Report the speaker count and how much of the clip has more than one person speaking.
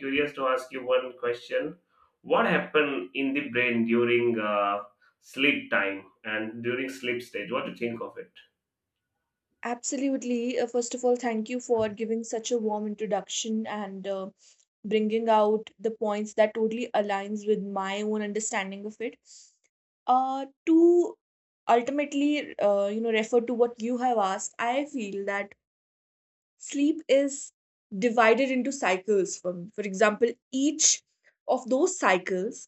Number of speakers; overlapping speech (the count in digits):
2, no overlap